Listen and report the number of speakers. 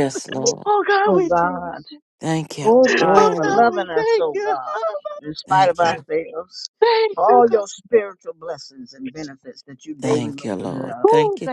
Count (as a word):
three